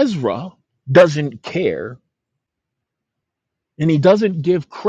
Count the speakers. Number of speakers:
1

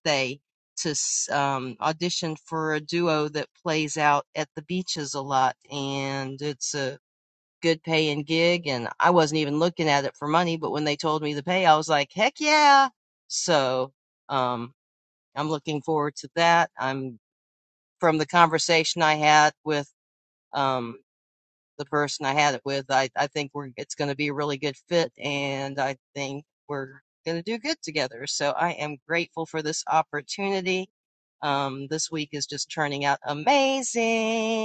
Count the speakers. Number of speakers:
1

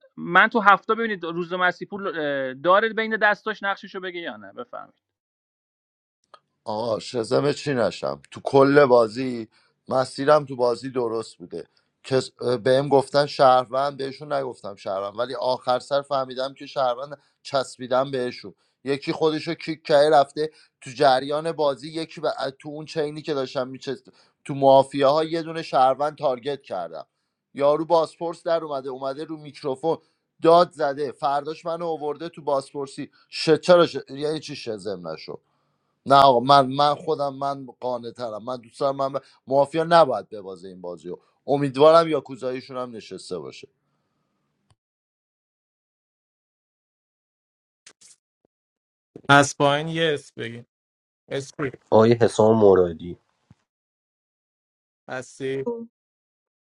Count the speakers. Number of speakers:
4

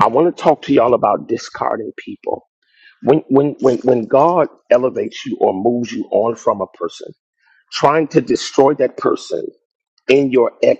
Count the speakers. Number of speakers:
1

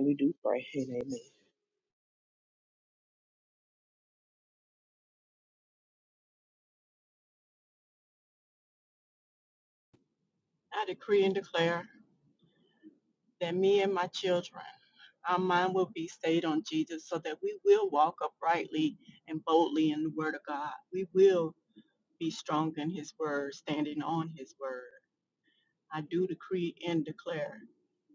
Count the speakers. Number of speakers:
2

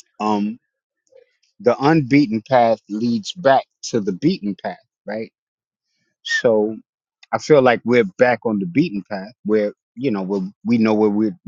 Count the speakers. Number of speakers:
1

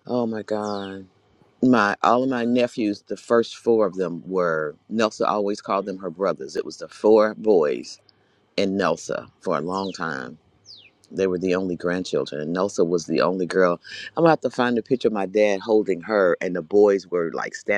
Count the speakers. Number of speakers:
1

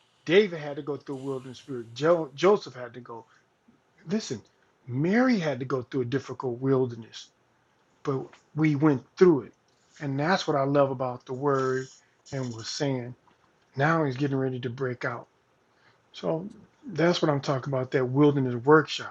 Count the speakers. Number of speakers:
1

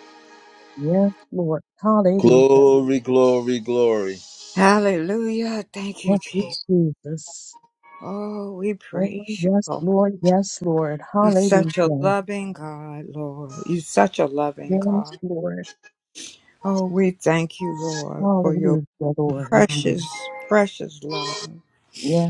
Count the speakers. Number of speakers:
3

